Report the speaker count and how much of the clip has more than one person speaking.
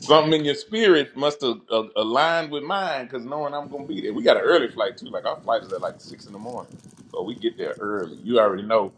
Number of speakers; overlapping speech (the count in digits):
1, no overlap